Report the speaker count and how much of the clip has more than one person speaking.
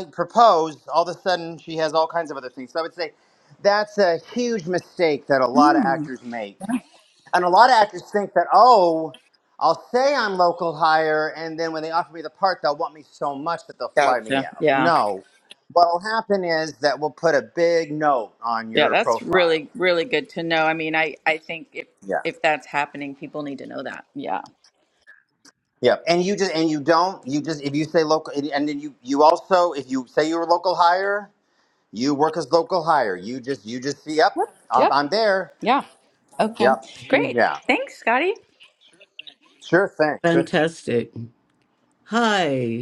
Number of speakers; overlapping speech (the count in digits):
3, about 10%